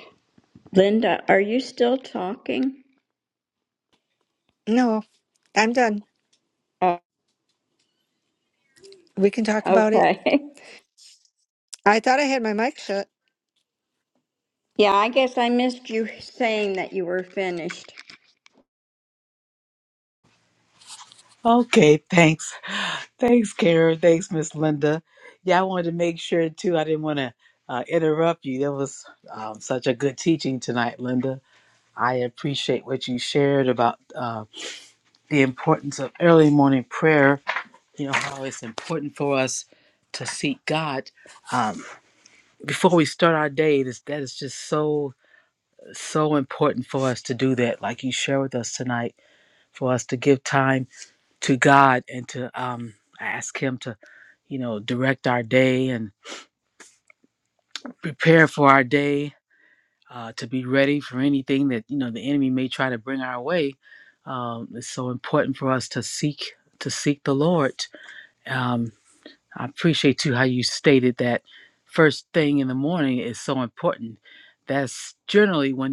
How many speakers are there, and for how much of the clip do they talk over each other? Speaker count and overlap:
3, about 1%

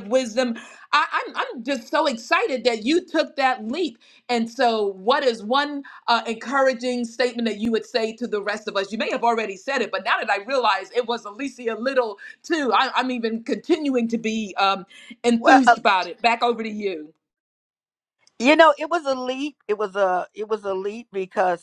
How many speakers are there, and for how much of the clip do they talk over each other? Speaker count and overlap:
2, about 2%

